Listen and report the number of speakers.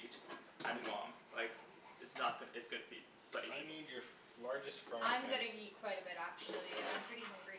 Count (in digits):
3